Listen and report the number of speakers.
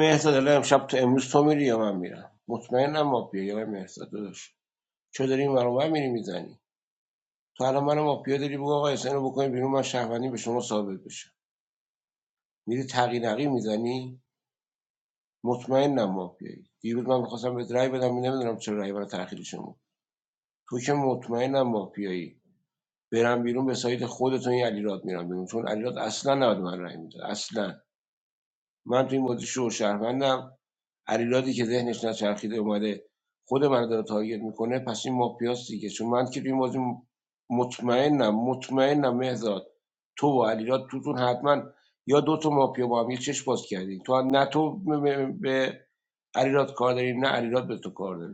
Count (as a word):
one